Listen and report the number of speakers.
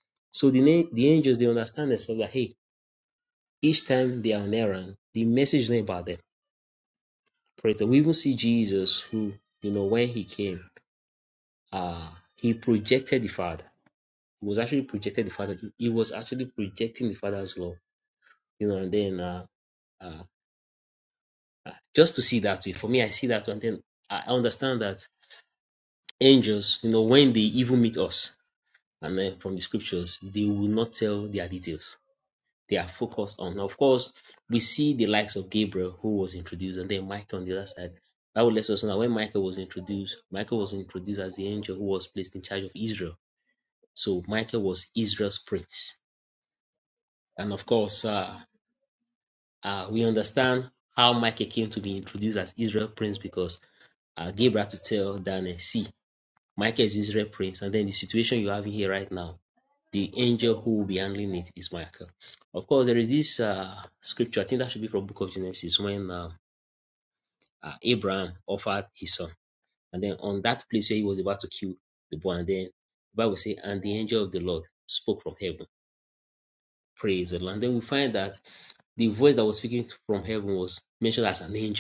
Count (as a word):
one